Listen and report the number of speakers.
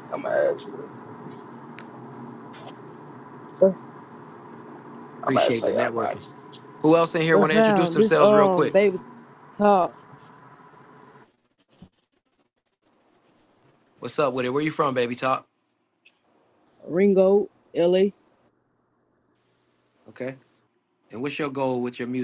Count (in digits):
3